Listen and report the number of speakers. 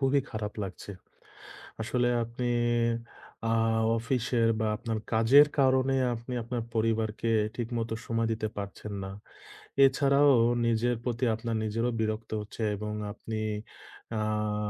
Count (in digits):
1